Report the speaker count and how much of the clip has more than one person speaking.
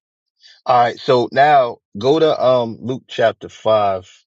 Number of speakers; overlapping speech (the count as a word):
one, no overlap